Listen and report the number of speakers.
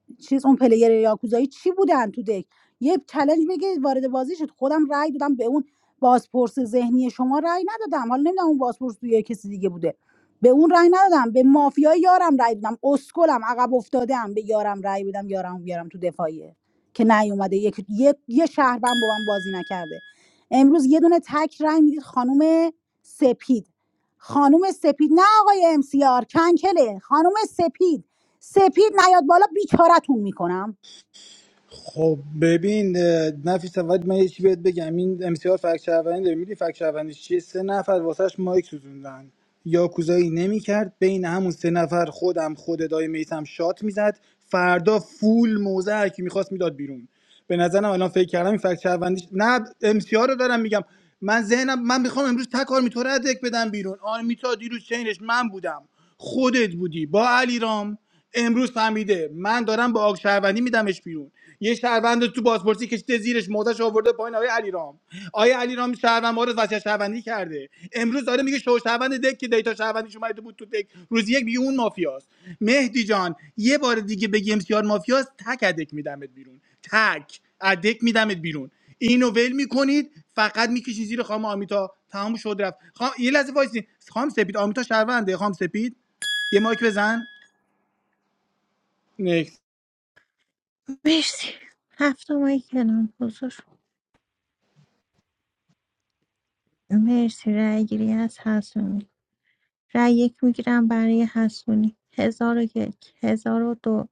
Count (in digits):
3